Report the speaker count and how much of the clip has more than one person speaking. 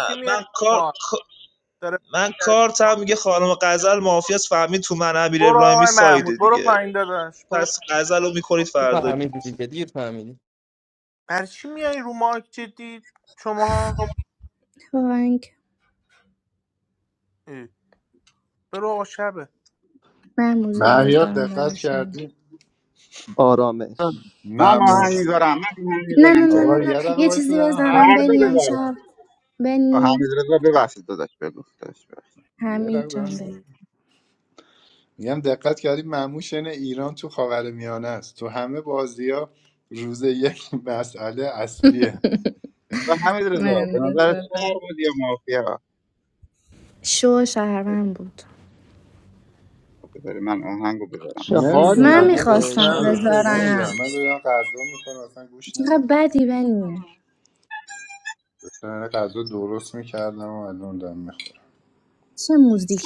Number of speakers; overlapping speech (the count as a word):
seven, about 21%